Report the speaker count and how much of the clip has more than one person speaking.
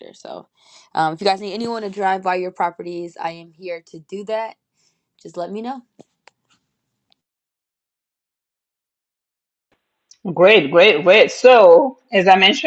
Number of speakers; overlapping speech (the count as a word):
two, no overlap